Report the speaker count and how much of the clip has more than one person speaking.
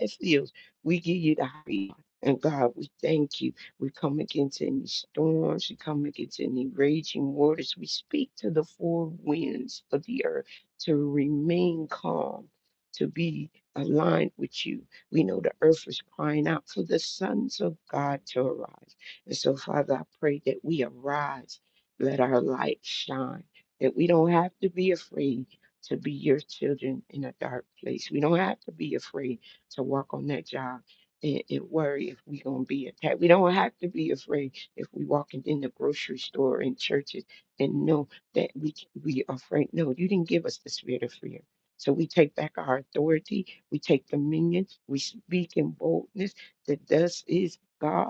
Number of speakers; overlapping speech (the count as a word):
one, no overlap